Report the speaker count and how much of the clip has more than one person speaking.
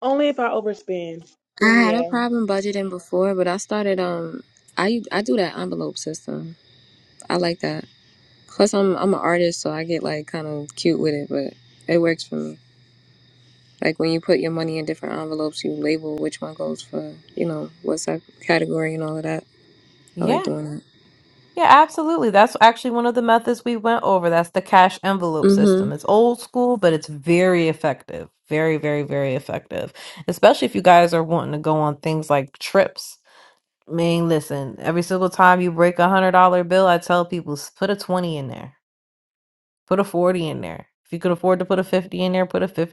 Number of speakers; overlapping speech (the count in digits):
3, about 3%